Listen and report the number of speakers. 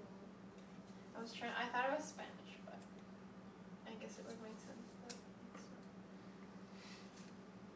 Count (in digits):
1